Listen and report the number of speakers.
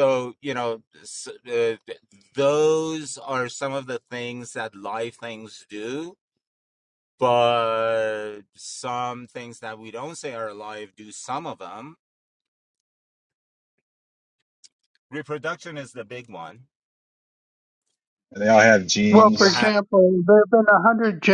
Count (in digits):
3